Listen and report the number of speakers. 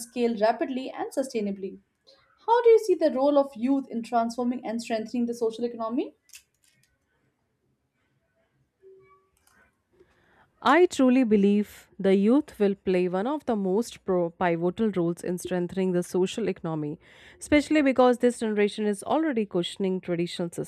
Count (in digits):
2